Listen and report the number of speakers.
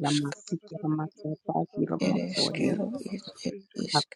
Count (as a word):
two